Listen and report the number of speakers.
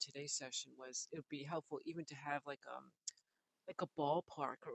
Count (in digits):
1